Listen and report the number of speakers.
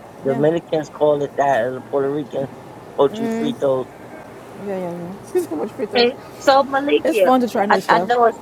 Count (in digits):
3